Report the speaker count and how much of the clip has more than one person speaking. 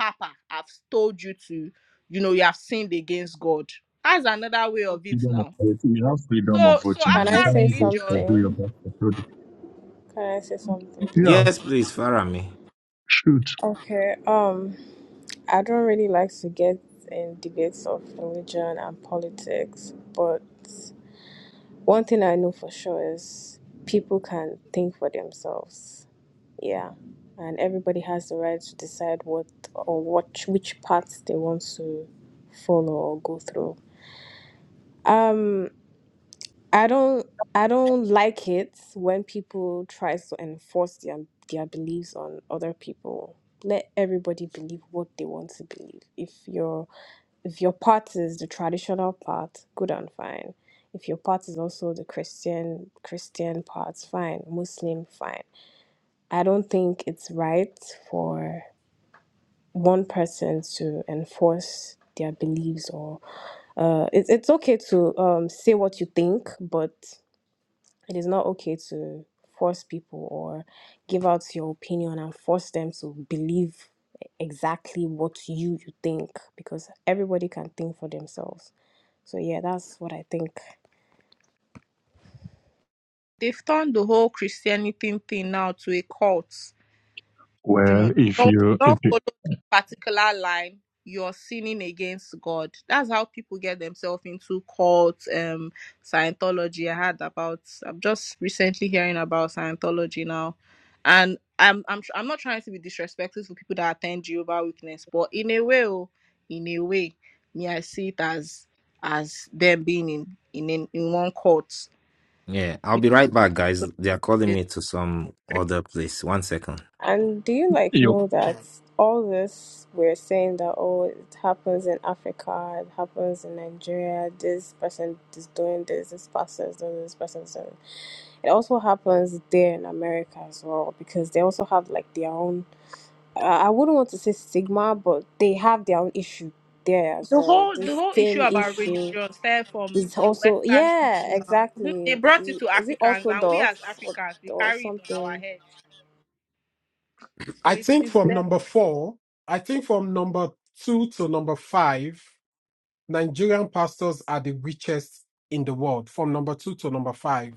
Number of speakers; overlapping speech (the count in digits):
5, about 8%